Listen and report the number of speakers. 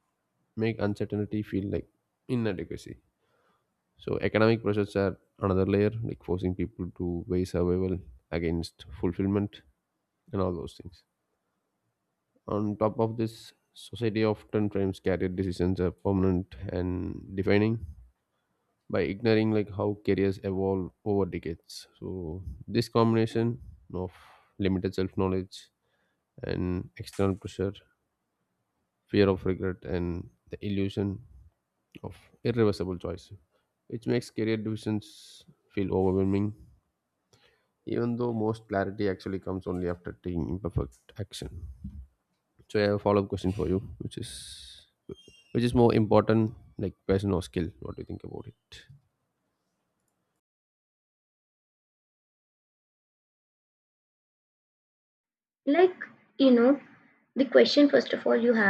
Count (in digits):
2